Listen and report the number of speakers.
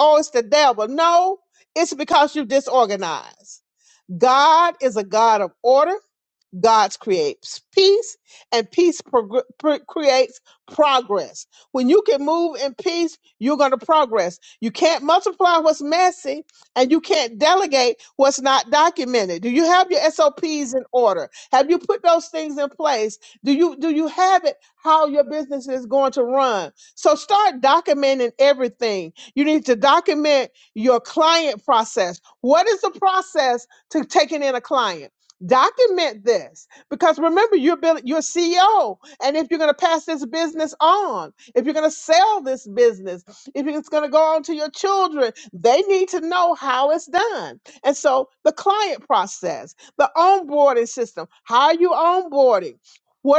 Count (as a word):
one